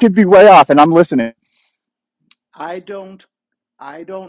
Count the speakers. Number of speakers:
2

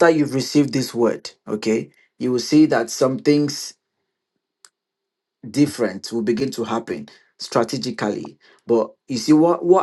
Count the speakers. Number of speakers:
1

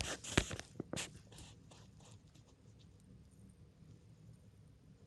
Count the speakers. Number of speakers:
0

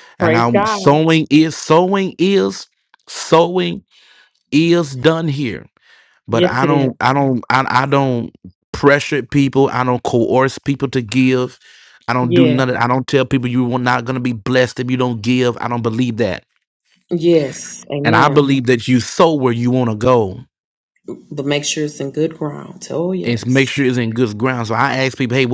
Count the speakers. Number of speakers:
2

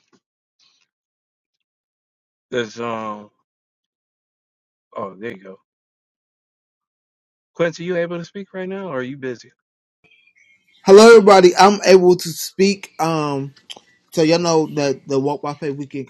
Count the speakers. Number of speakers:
2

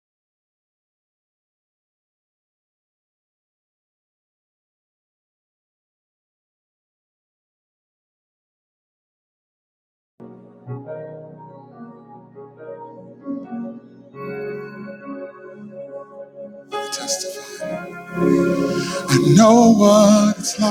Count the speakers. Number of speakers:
1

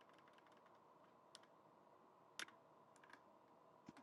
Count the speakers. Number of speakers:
0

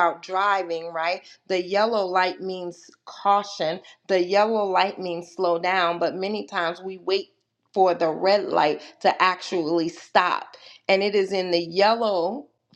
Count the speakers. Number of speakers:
1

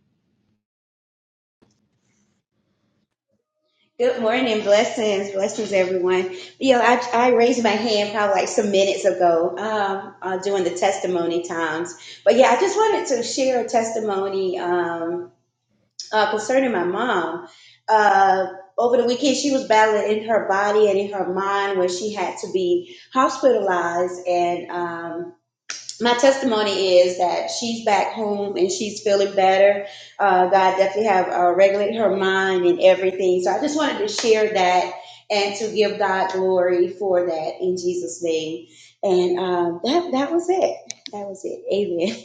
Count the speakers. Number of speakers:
1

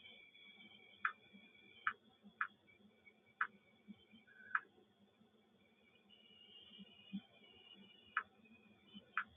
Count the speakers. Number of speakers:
0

